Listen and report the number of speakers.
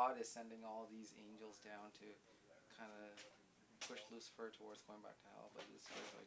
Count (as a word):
one